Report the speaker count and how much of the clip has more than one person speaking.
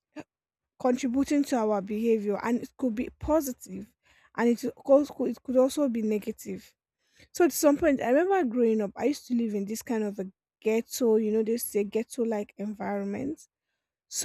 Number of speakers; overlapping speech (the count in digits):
1, no overlap